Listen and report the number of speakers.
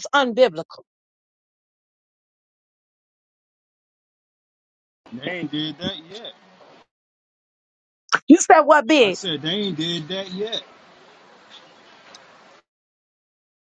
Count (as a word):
two